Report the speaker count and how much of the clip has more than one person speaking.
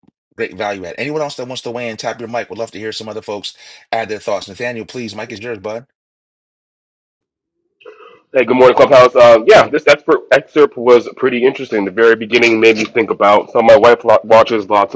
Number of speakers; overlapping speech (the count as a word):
two, no overlap